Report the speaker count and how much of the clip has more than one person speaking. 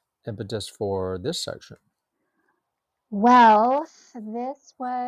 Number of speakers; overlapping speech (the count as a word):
two, no overlap